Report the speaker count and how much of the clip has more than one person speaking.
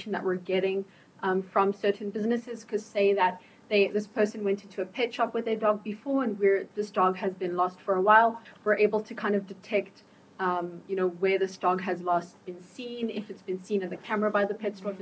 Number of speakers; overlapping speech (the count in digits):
1, no overlap